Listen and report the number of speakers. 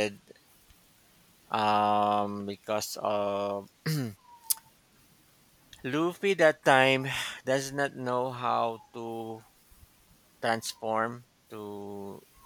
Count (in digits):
1